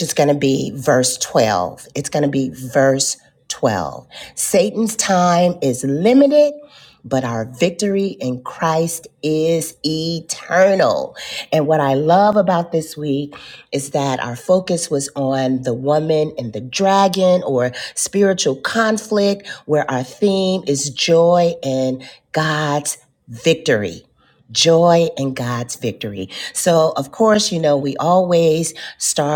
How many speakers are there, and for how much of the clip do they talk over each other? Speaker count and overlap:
1, no overlap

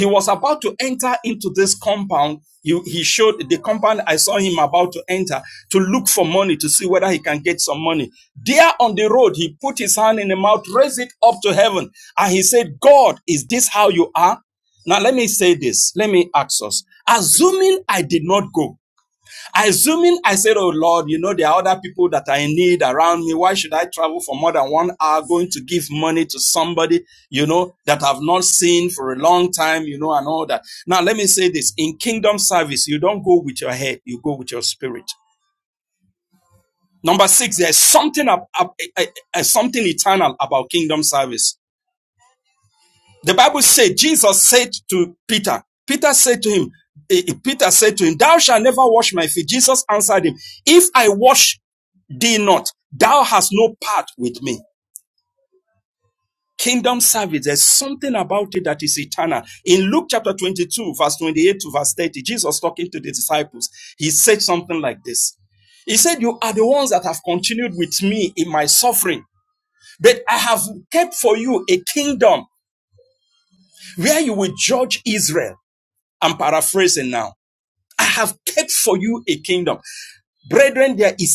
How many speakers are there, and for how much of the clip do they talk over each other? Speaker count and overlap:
1, no overlap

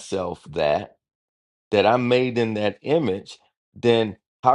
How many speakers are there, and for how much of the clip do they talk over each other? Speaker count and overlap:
1, no overlap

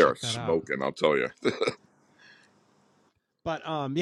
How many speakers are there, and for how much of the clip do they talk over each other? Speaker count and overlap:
2, about 14%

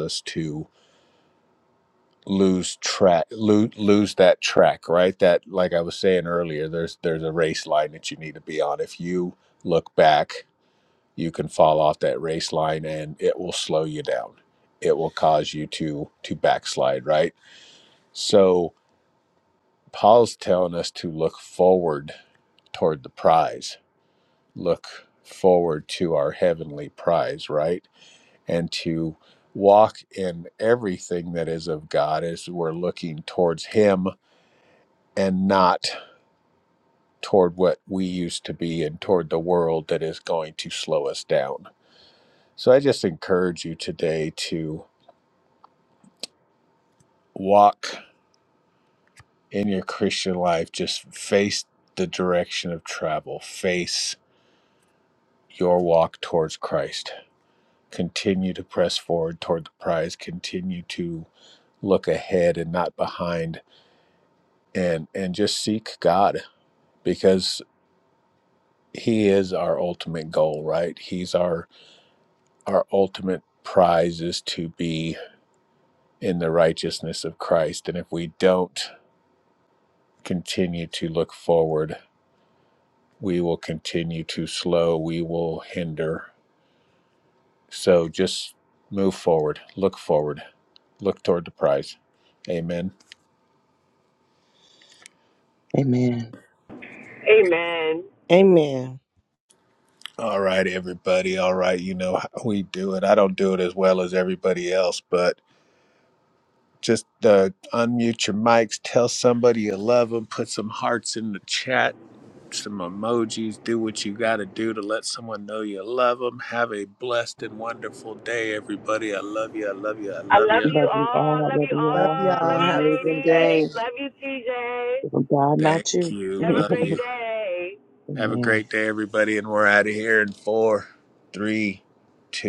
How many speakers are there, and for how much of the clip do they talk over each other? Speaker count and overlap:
4, about 4%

